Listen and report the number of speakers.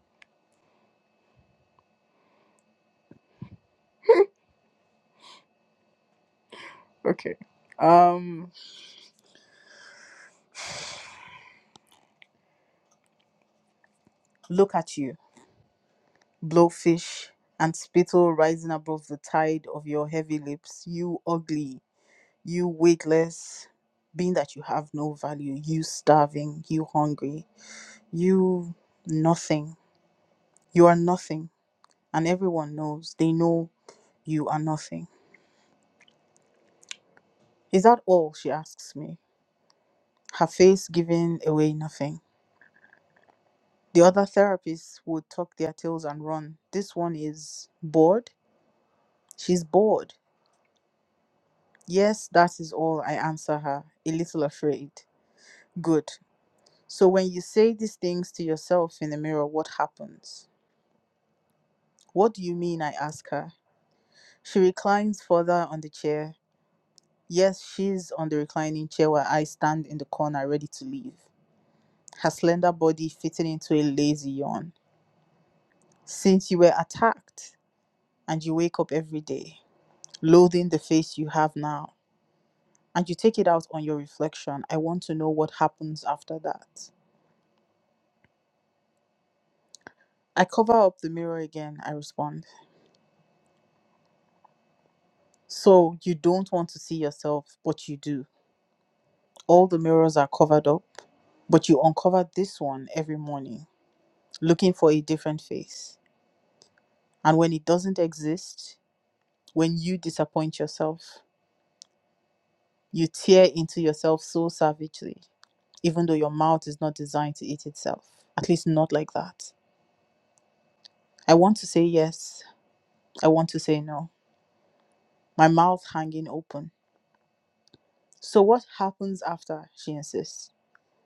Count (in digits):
1